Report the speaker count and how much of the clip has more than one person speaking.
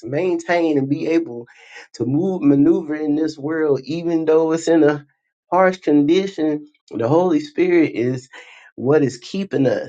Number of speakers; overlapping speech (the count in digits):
1, no overlap